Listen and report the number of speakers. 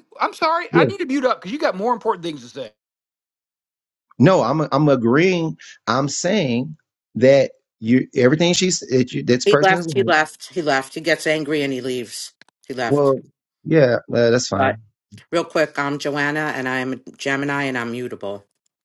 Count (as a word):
three